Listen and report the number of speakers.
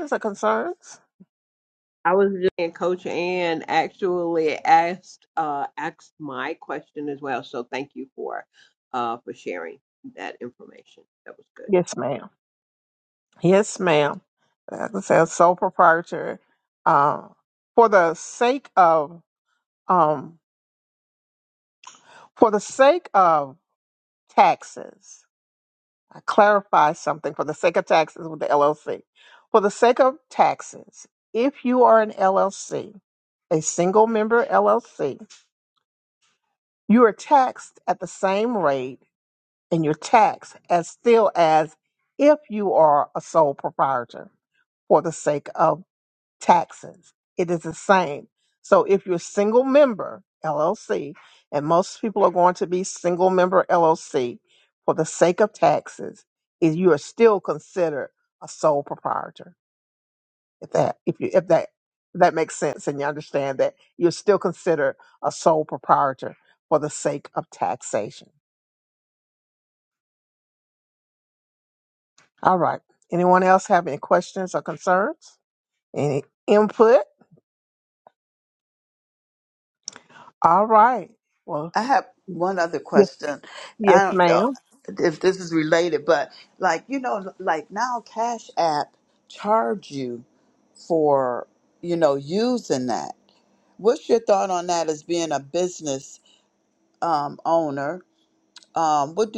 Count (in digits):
3